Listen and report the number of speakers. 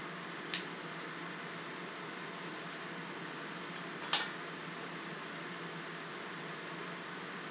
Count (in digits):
0